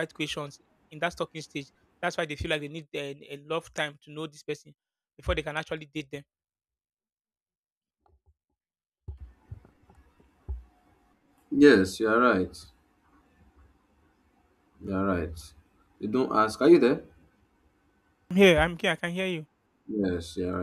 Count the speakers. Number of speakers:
2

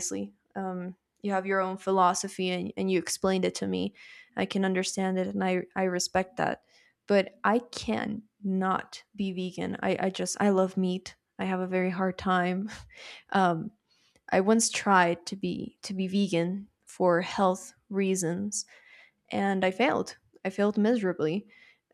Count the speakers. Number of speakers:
1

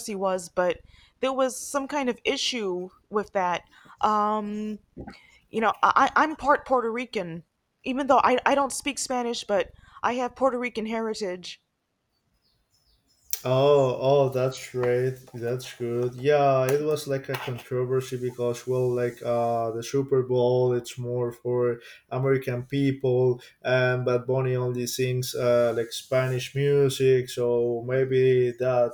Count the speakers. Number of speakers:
2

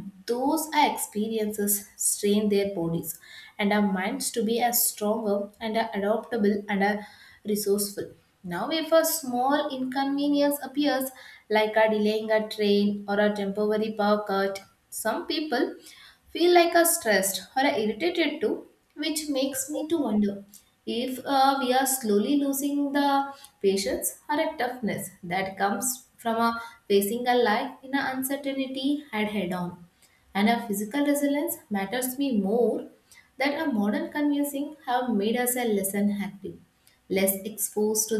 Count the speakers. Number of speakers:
1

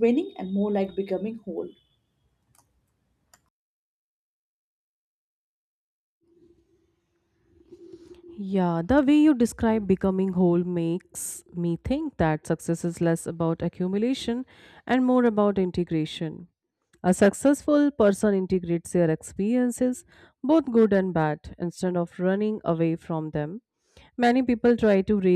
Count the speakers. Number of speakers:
2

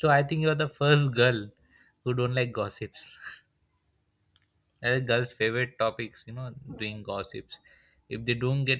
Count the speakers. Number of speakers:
1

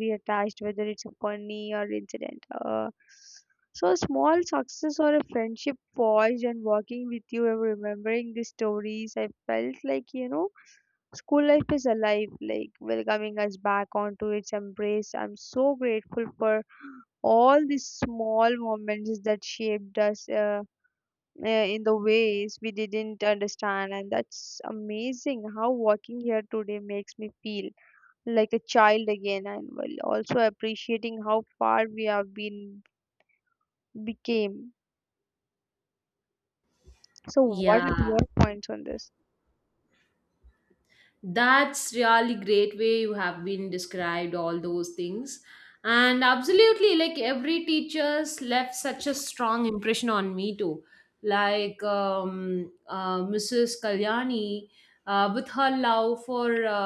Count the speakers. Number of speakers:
2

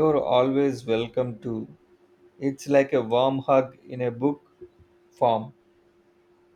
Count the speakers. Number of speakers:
1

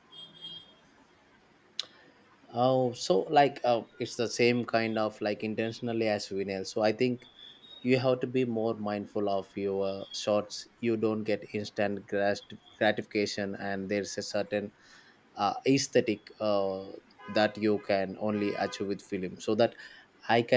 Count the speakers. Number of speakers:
1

